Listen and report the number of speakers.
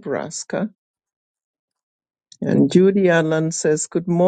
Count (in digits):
1